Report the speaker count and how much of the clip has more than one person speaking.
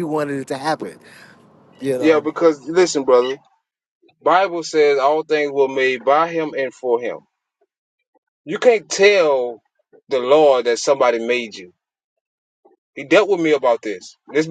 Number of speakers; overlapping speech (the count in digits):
2, about 2%